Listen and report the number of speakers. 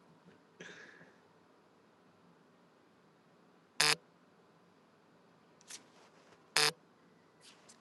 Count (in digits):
0